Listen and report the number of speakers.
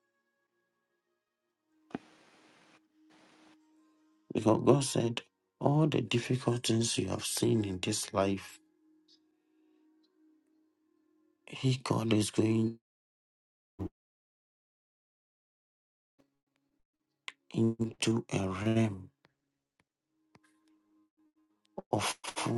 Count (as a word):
one